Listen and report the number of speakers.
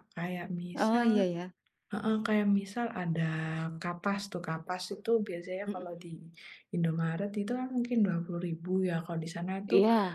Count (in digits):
2